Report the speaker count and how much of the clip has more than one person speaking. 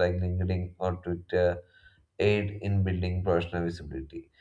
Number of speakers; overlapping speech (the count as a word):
one, no overlap